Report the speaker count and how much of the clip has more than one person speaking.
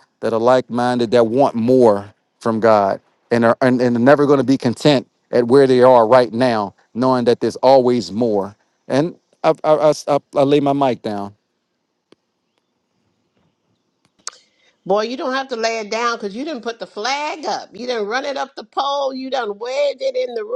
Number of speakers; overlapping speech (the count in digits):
2, no overlap